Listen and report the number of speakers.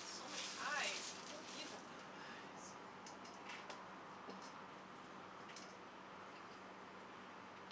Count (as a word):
one